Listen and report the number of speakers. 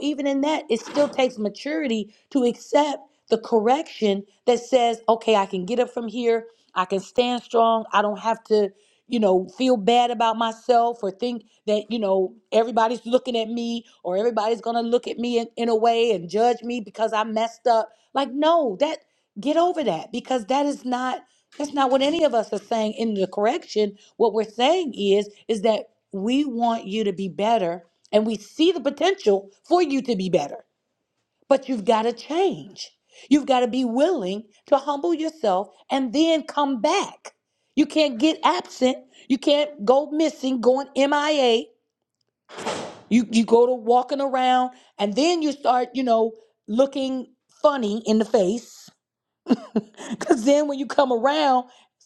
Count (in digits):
1